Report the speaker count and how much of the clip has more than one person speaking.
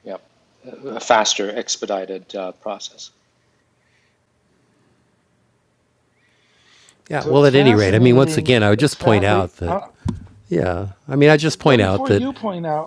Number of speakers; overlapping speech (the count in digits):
3, about 27%